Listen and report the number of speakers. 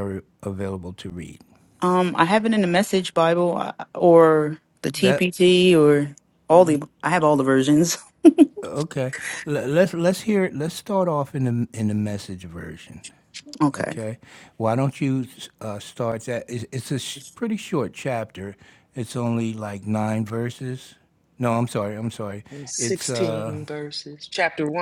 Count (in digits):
3